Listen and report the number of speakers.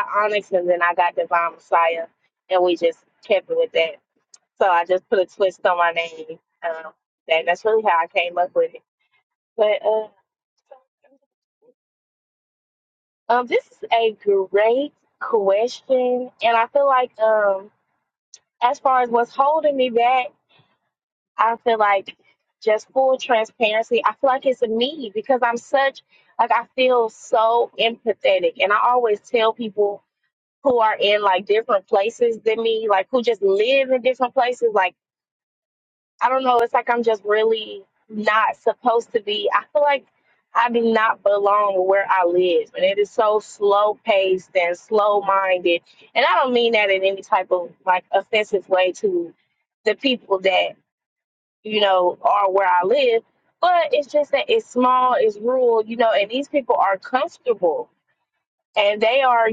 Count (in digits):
1